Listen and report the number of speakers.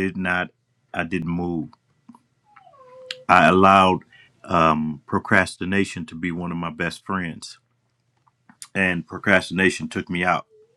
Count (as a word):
one